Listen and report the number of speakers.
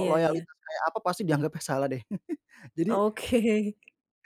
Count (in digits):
2